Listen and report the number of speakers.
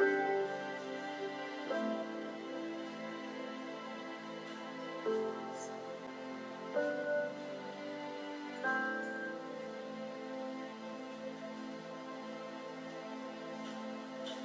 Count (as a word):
zero